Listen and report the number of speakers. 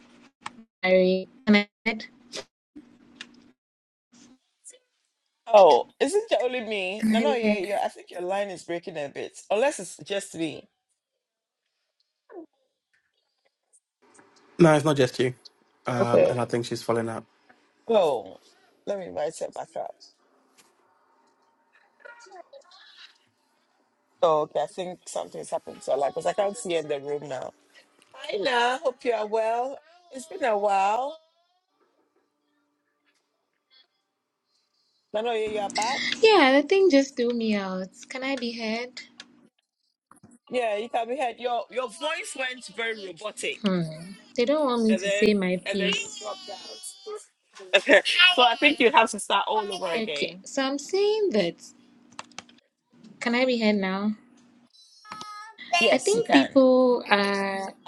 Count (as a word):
three